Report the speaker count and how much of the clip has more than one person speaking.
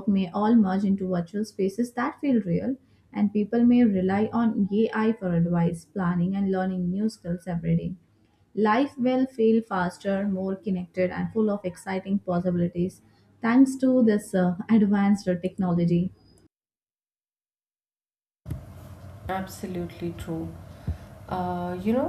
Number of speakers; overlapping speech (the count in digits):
2, no overlap